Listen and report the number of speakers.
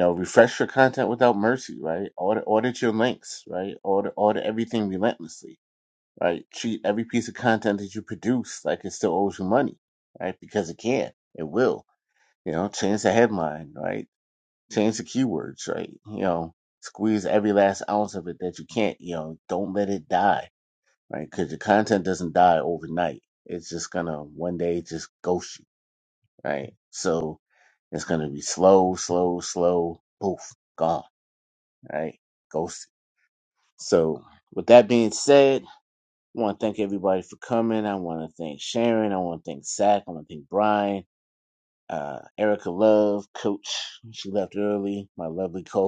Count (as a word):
one